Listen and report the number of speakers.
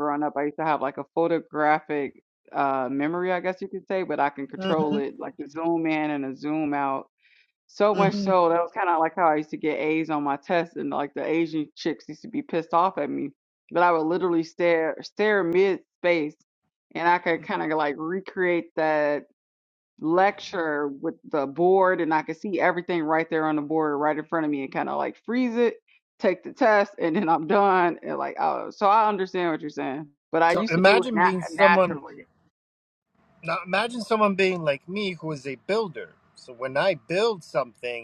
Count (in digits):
2